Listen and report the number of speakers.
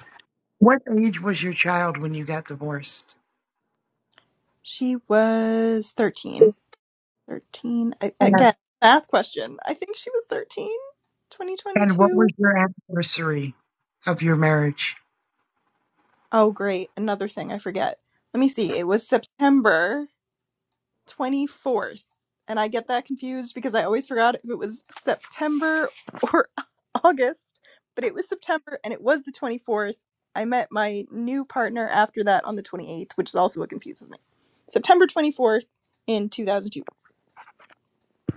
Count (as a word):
two